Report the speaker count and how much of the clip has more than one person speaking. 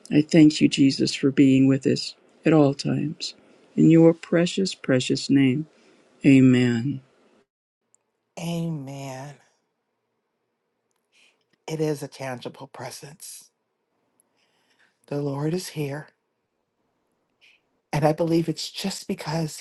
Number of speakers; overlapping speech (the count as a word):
two, no overlap